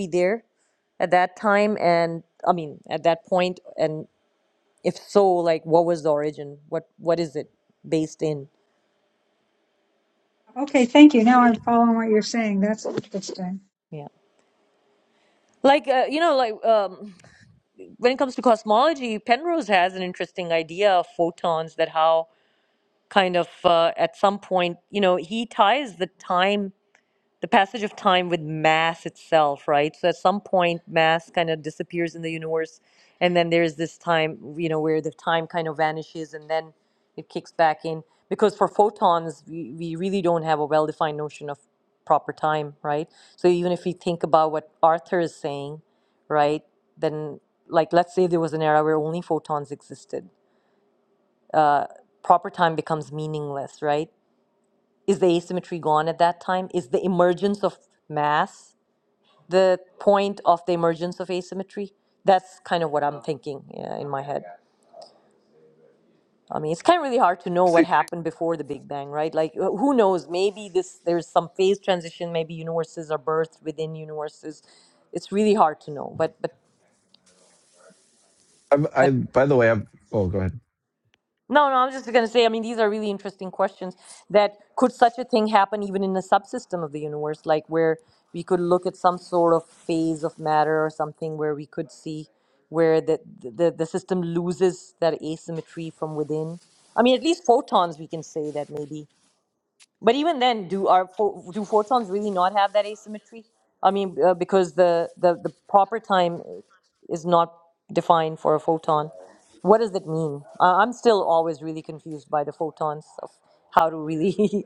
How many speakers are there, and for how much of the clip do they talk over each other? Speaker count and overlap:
three, under 1%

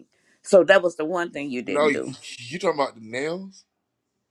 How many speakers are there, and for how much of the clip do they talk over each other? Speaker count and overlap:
two, about 8%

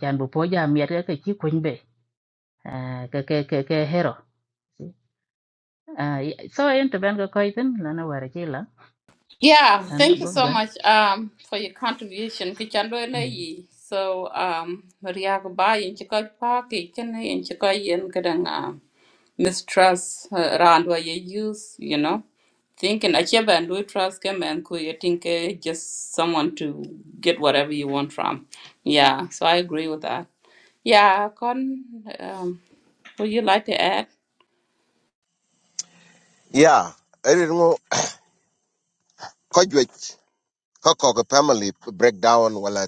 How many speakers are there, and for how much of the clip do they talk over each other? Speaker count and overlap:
three, about 2%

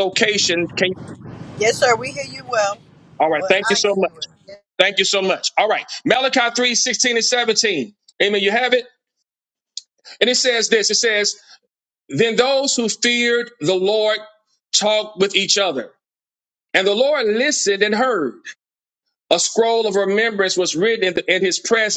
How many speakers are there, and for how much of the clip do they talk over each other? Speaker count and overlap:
two, about 3%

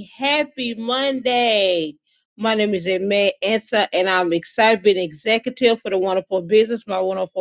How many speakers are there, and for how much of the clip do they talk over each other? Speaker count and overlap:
one, no overlap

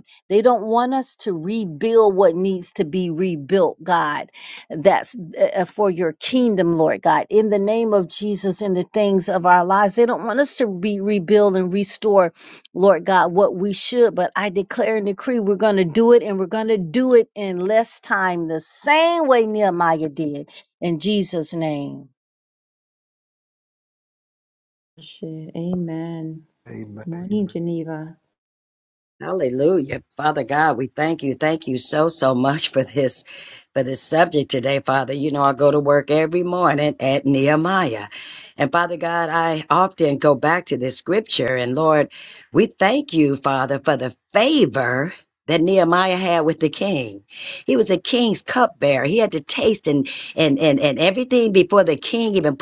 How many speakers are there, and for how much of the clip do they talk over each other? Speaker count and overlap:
three, no overlap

